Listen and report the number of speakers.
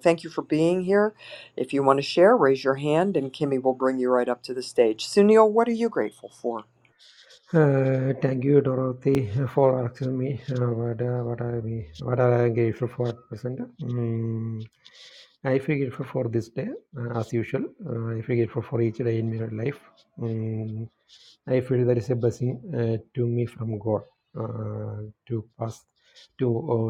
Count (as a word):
two